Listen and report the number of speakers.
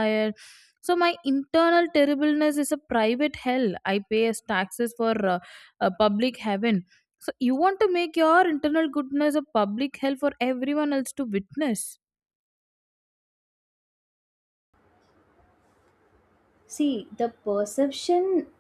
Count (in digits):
2